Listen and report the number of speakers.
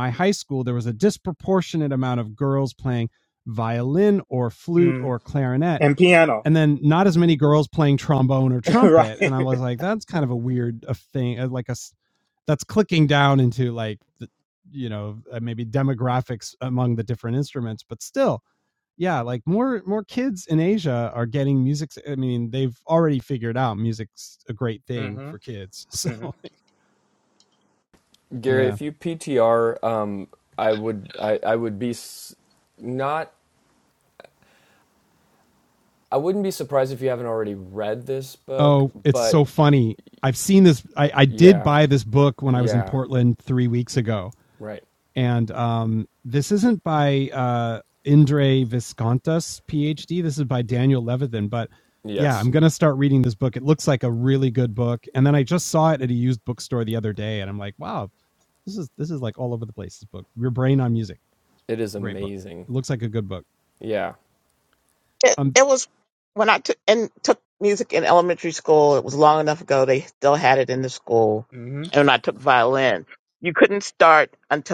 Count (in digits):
4